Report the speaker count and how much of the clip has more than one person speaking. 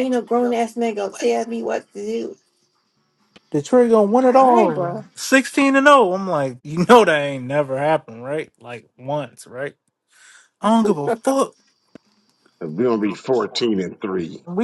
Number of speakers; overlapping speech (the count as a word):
three, about 5%